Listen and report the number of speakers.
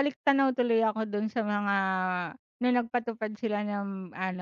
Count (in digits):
1